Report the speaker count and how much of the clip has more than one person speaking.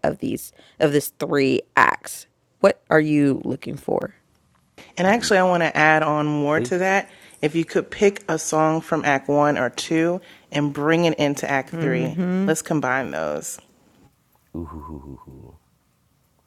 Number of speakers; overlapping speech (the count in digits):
3, about 5%